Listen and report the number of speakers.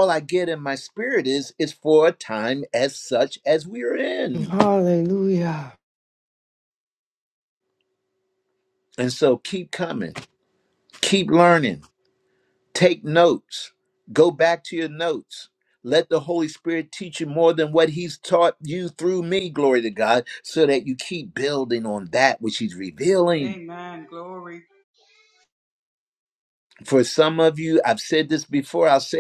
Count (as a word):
three